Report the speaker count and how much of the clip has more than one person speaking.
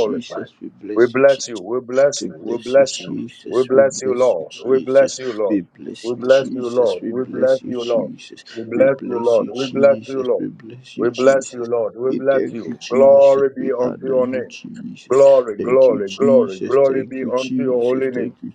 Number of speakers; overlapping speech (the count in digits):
2, about 76%